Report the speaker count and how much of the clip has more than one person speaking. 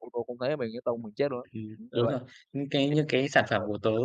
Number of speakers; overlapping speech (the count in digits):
2, about 10%